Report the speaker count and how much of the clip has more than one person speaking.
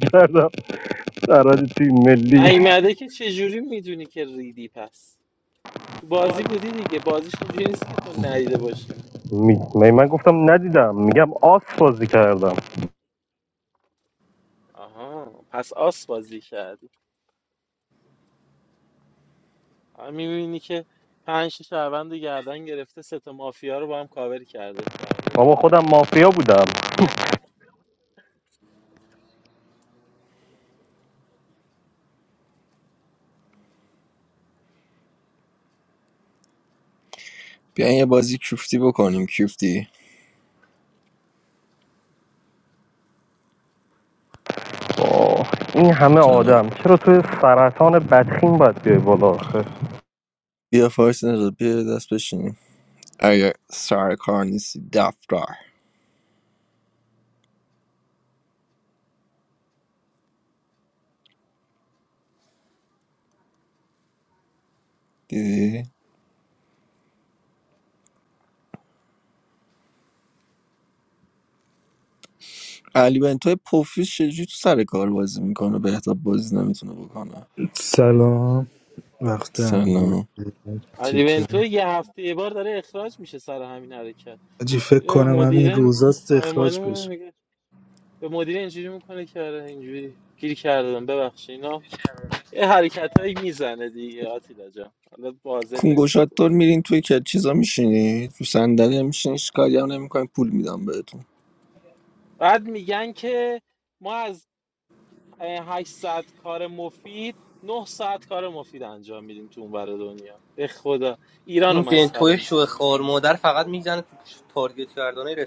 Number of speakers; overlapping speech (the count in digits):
5, about 5%